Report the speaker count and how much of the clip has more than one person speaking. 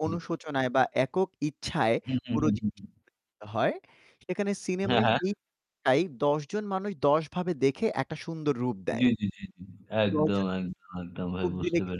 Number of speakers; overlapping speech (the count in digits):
2, about 14%